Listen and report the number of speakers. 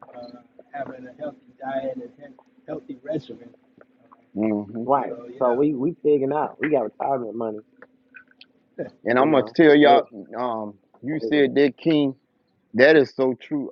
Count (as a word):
three